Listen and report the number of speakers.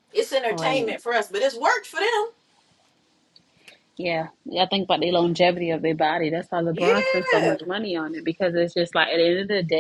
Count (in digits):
2